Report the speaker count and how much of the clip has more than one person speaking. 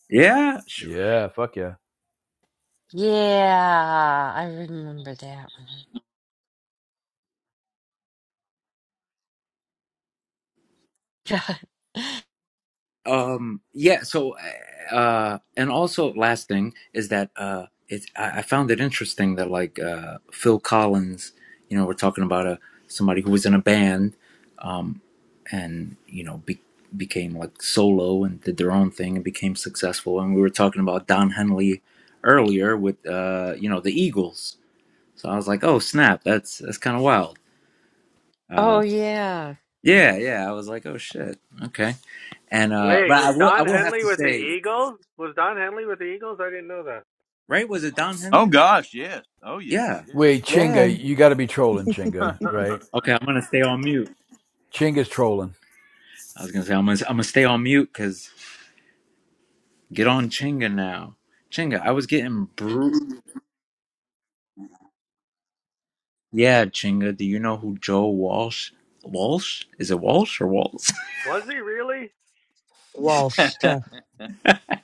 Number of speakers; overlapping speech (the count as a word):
six, about 4%